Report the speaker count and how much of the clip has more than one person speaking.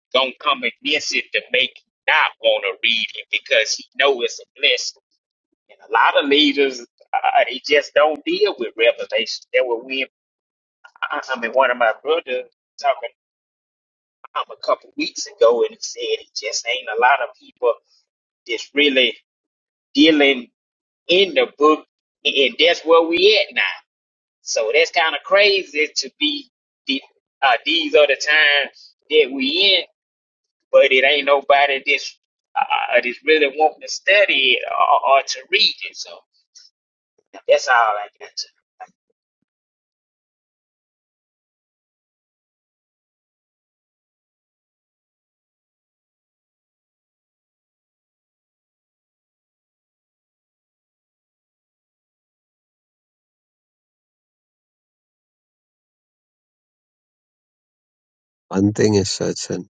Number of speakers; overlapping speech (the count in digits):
2, no overlap